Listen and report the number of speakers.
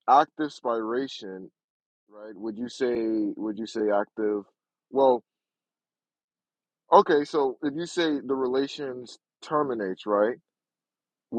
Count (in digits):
1